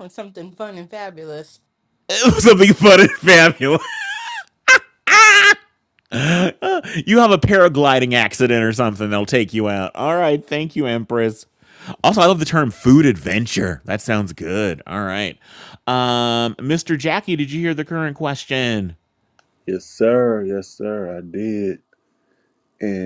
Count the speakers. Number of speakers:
3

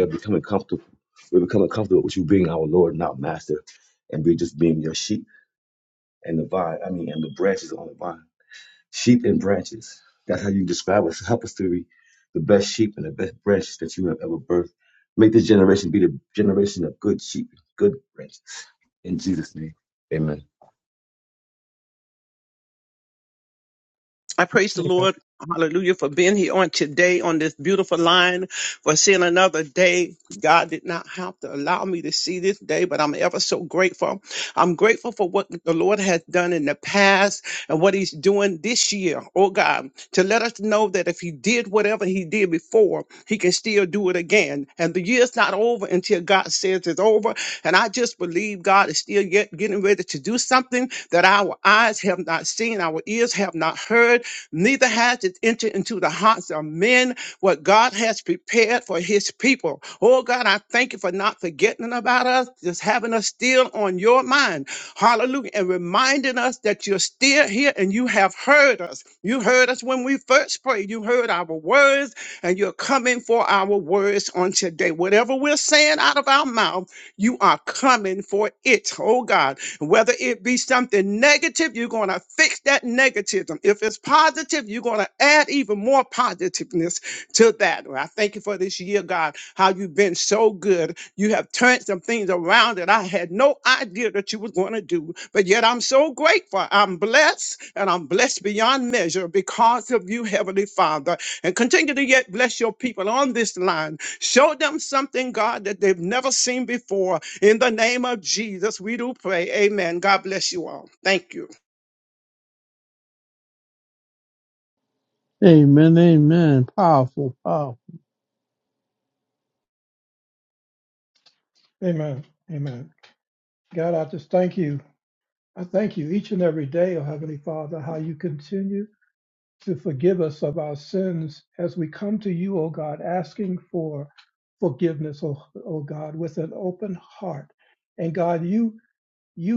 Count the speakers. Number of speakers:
4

